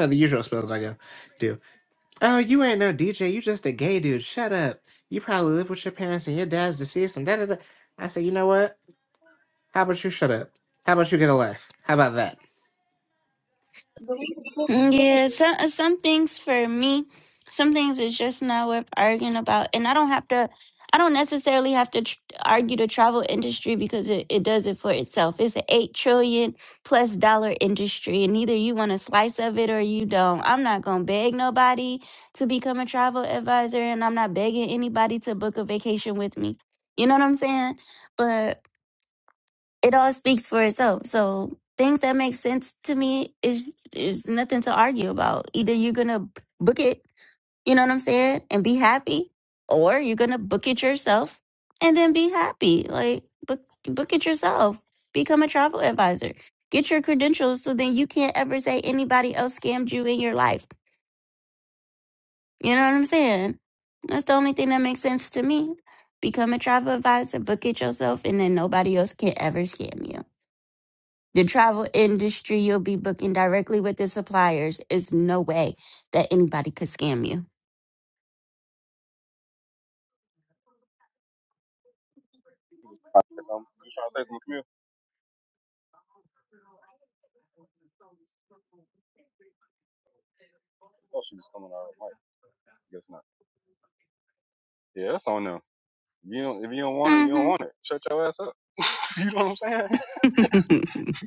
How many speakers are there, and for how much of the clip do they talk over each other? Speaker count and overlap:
four, about 1%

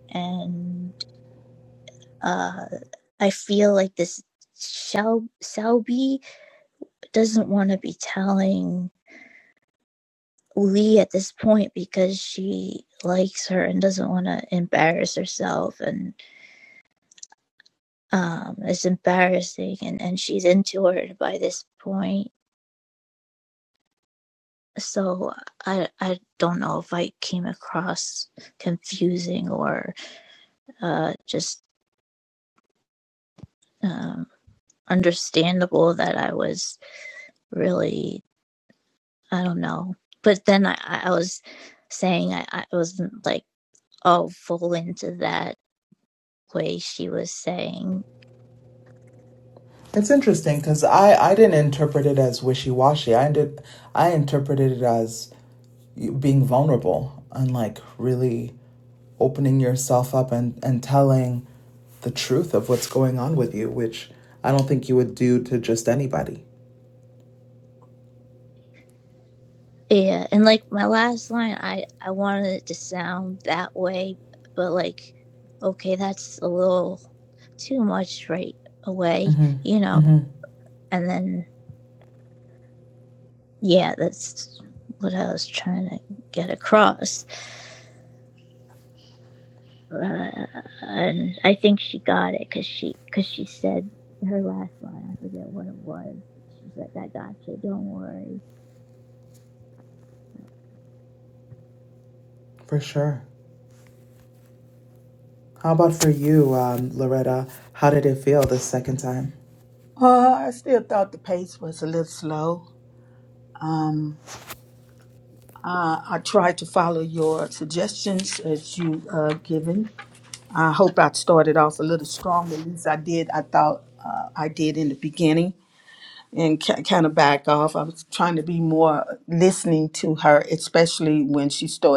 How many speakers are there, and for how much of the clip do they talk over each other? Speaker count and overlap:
three, under 1%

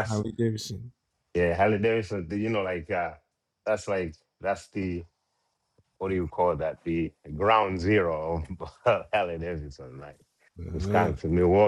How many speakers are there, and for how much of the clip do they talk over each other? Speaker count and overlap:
two, about 4%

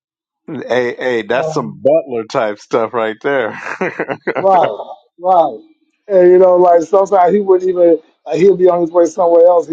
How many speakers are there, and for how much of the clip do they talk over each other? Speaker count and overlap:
two, about 3%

